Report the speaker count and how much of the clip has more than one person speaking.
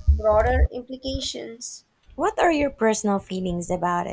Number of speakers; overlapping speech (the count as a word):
two, no overlap